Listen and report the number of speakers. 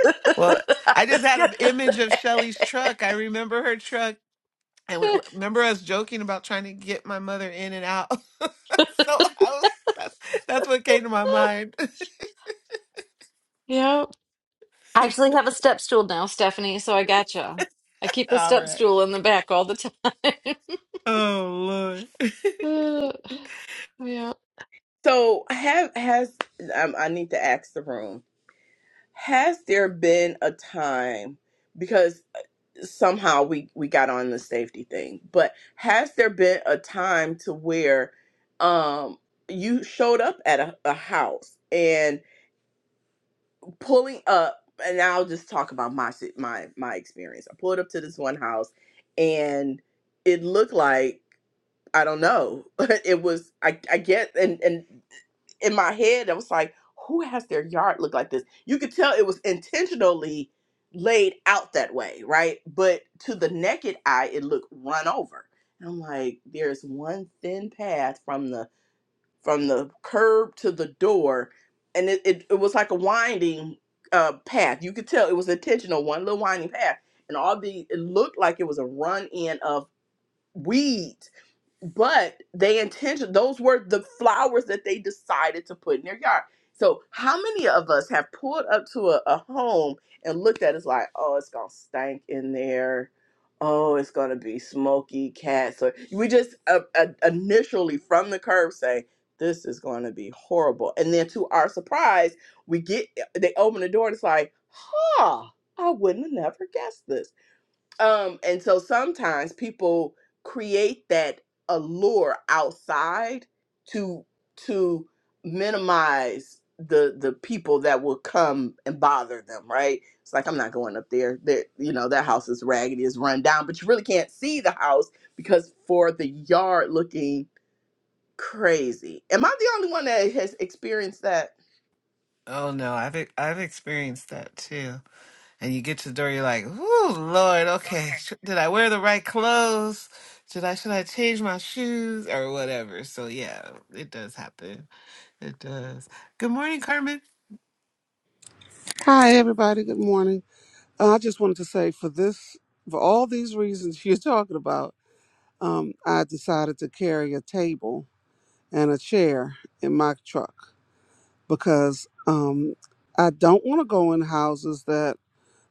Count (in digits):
4